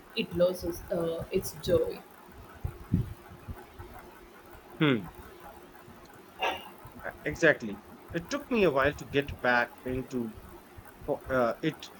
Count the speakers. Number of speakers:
two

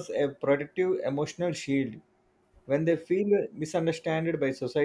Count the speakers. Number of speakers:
one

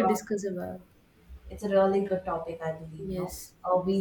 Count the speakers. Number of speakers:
two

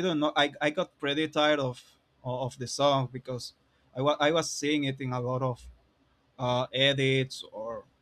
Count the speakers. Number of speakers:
one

